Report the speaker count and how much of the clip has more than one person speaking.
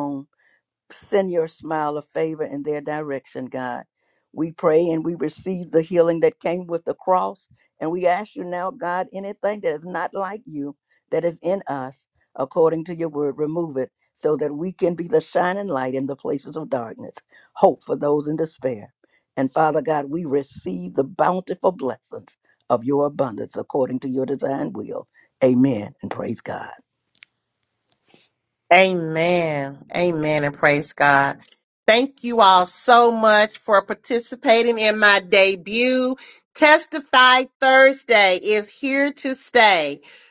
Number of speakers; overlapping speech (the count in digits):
2, no overlap